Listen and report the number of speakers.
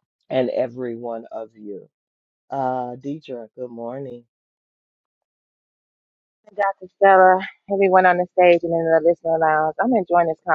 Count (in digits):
2